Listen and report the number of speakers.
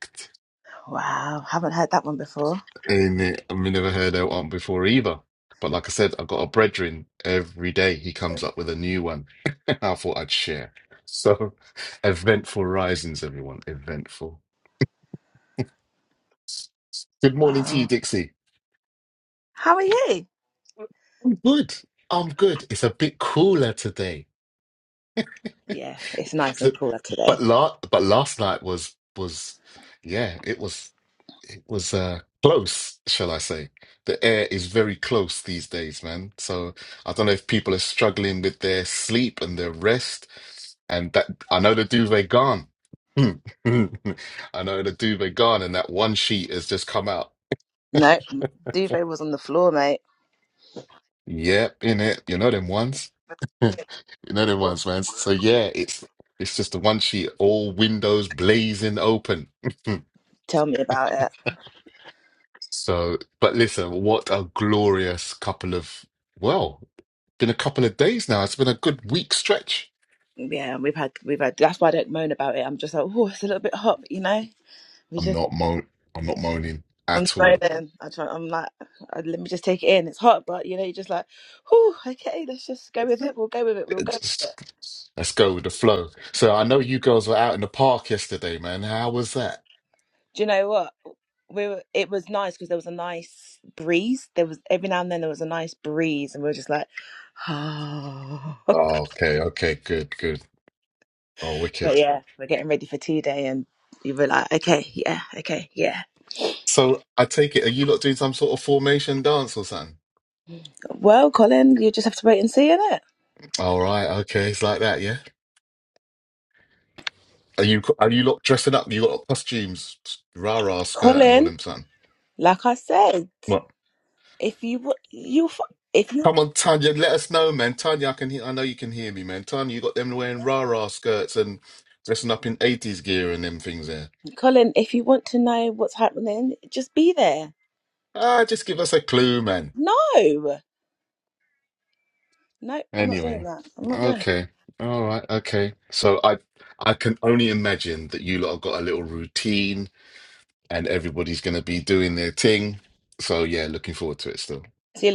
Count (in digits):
2